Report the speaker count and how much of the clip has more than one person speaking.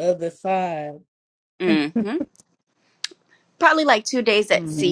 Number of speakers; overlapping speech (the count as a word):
two, about 8%